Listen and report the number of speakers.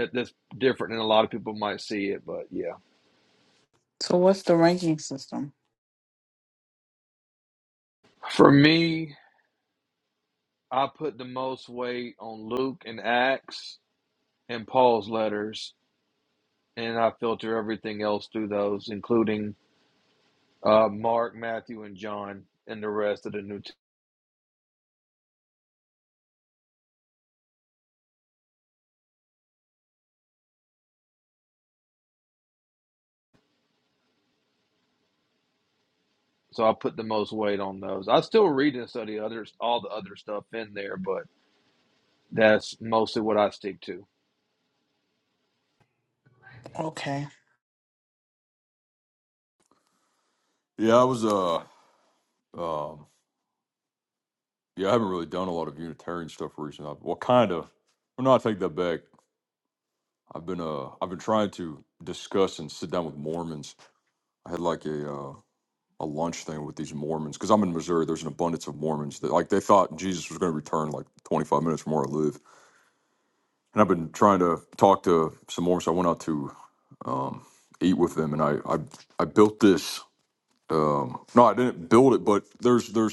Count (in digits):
3